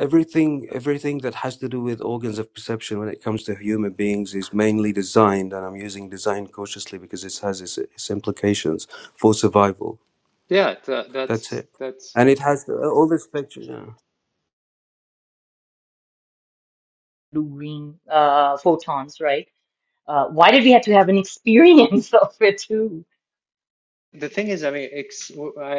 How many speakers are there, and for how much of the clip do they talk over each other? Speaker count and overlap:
three, under 1%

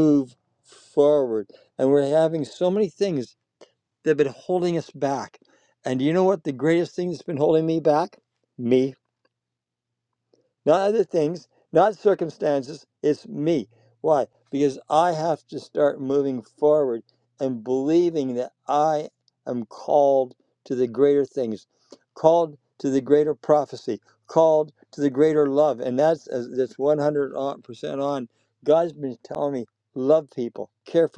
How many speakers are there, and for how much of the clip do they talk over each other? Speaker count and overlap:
one, no overlap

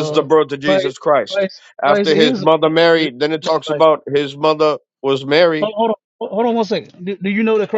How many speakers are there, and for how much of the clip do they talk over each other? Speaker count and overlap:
two, about 16%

